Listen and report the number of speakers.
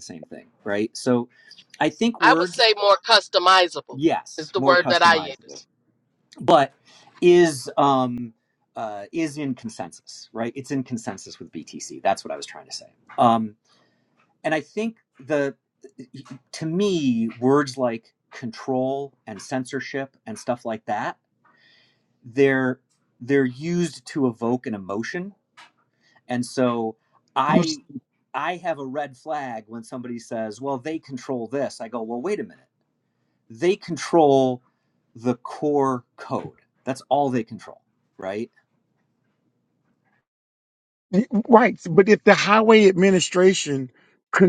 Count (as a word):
three